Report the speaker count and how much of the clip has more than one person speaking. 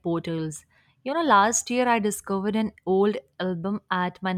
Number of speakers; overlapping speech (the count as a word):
one, no overlap